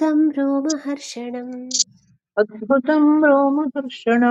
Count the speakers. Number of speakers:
2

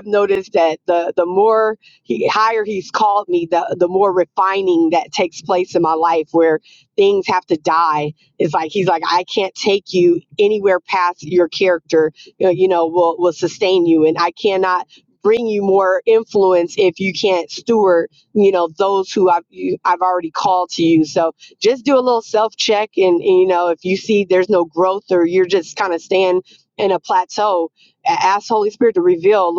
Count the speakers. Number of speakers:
1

